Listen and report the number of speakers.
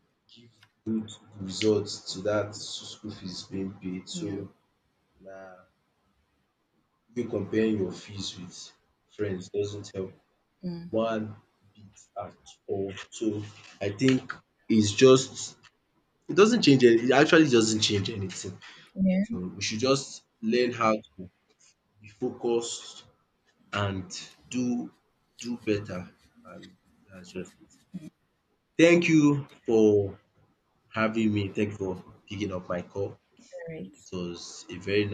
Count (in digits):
2